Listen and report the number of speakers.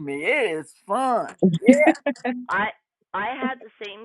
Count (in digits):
2